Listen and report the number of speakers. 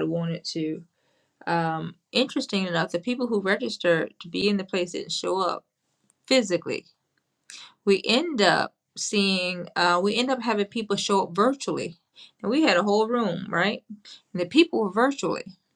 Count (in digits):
1